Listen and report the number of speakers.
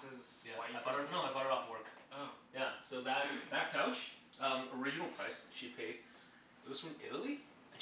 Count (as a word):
two